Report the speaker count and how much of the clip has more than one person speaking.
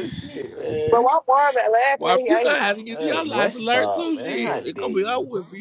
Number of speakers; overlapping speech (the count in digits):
3, about 55%